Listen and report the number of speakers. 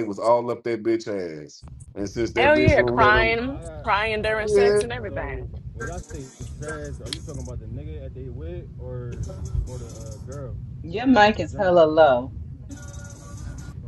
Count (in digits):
4